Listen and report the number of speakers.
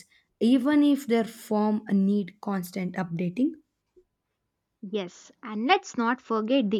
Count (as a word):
two